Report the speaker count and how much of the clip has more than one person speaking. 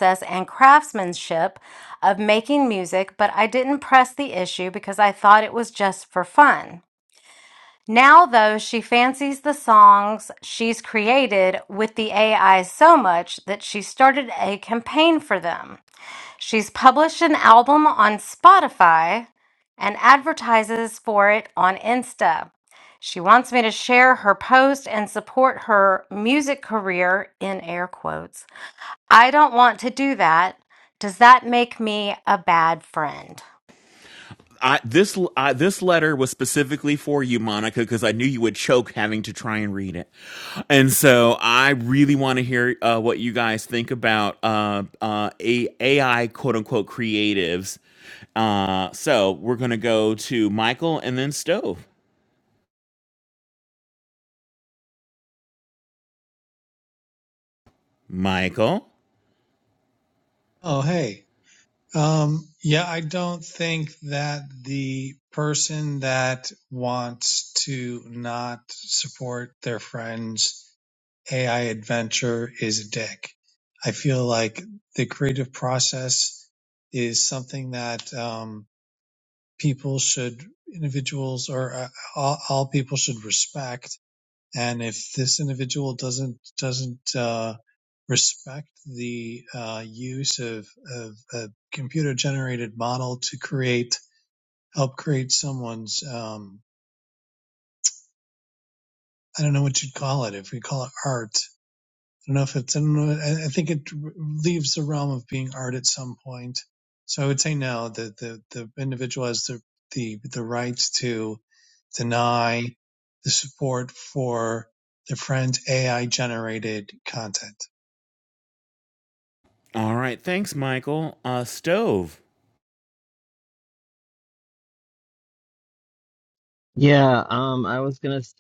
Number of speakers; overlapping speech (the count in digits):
4, no overlap